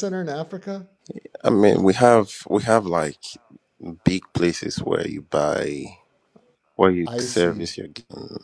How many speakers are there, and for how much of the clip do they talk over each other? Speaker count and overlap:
2, about 7%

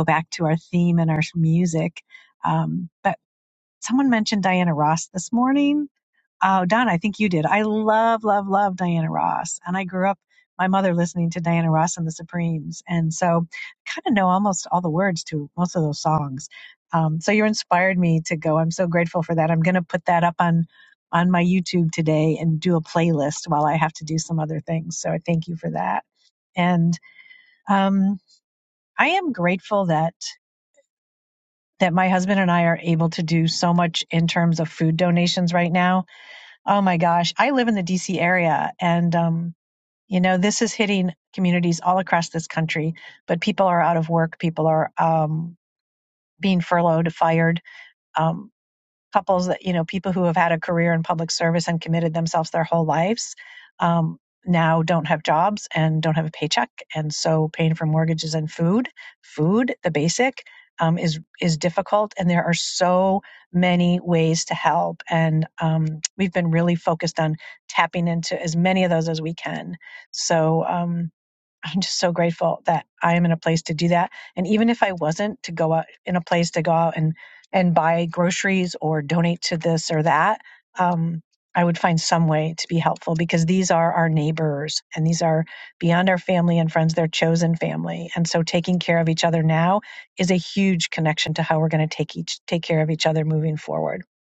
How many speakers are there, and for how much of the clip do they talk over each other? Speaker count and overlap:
1, no overlap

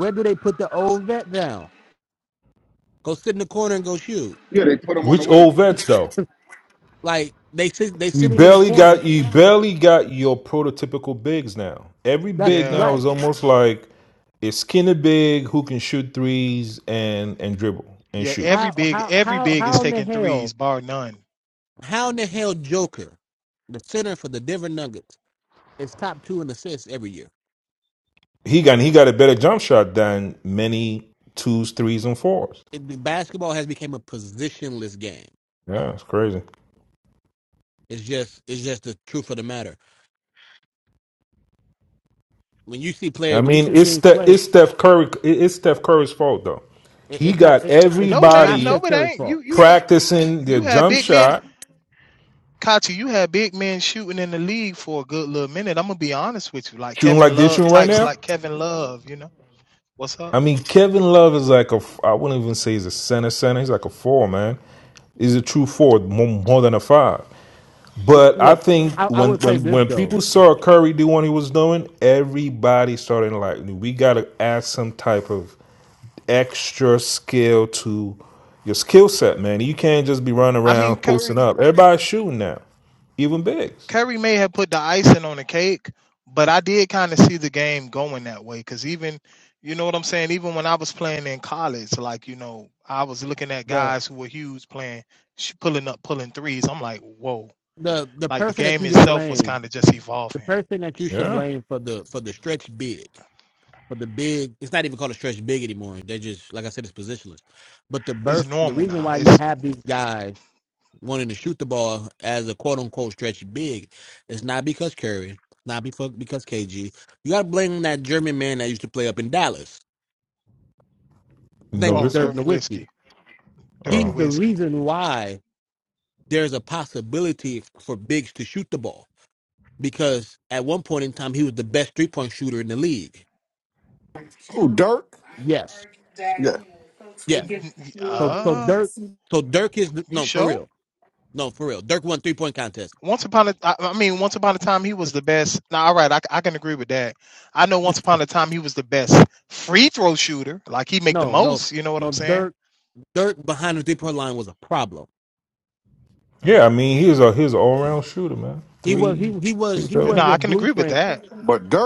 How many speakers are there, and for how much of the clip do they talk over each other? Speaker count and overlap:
5, about 13%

